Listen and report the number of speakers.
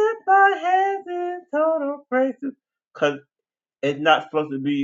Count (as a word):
one